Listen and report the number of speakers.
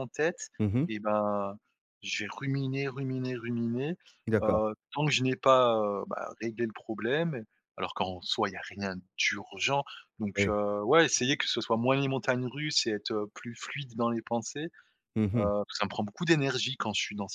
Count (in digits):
2